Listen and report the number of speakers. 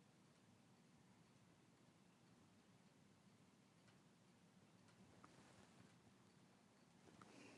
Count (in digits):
0